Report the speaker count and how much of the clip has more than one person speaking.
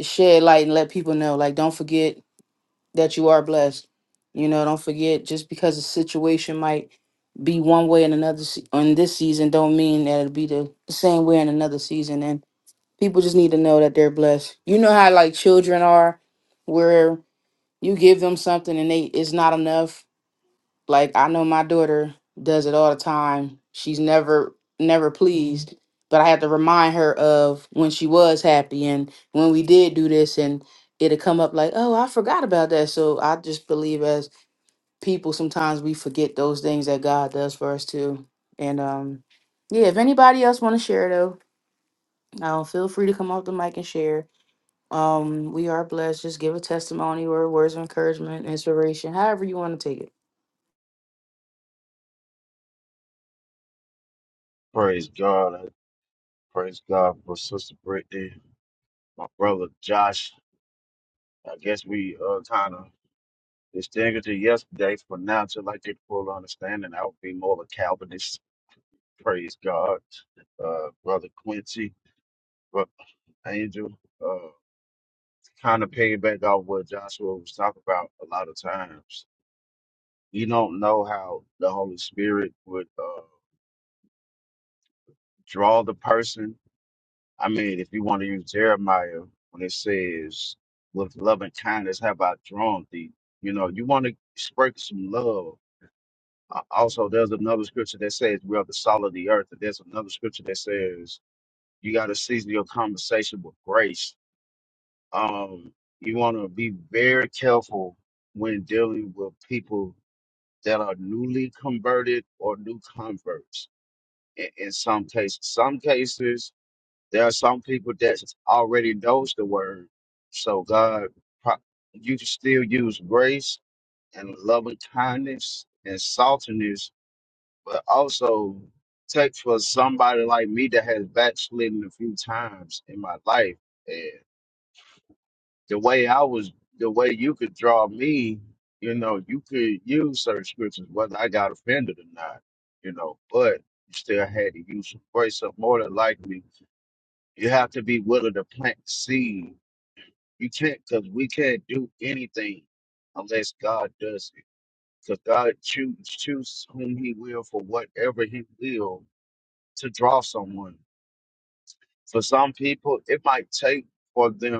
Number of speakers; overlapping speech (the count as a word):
two, no overlap